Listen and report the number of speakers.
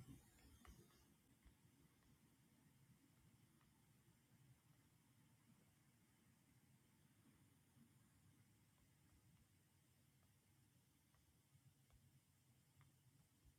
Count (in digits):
0